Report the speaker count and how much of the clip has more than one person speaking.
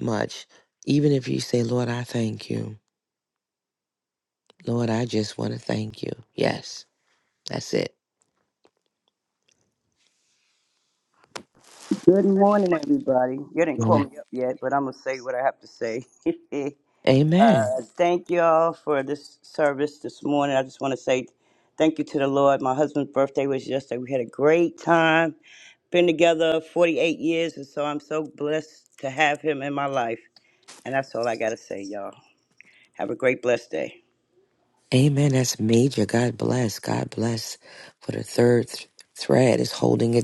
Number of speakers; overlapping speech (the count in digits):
2, about 1%